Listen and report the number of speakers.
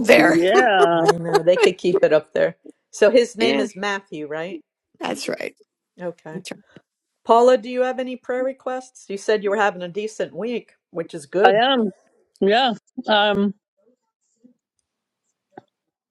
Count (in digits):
3